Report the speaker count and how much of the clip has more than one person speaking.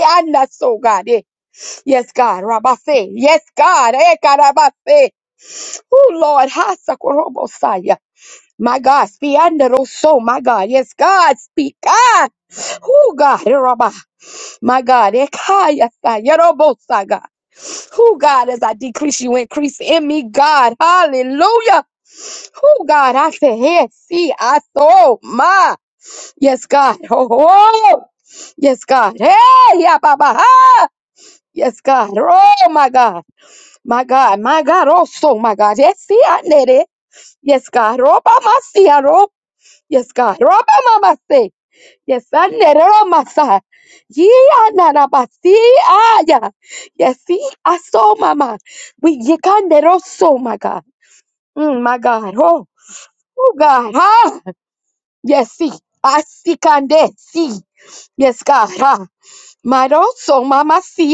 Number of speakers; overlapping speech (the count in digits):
1, no overlap